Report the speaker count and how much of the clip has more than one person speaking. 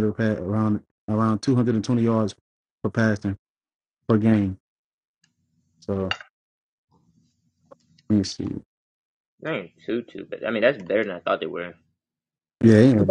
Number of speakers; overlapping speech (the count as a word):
two, no overlap